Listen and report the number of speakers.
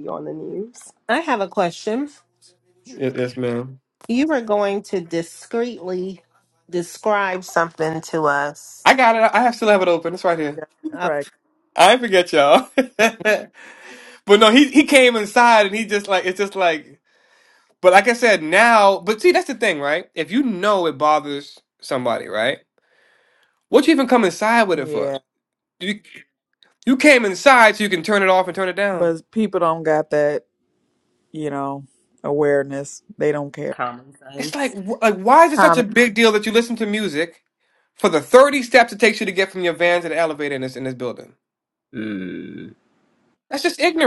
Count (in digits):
4